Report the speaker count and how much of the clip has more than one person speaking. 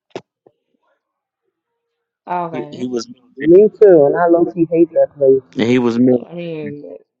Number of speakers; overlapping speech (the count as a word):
three, about 6%